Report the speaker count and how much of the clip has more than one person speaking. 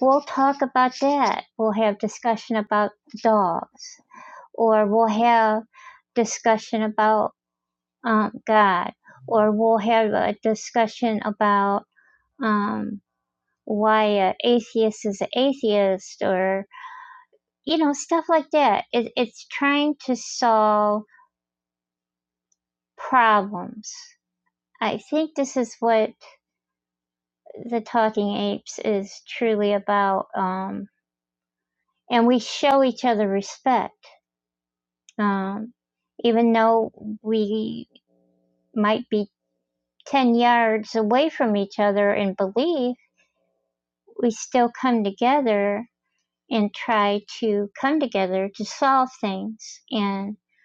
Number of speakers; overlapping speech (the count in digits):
1, no overlap